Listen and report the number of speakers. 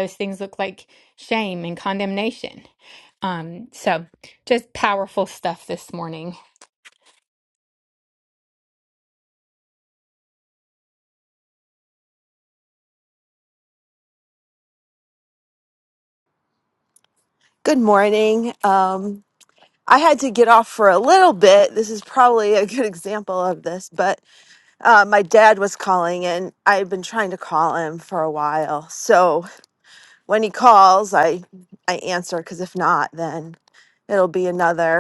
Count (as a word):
two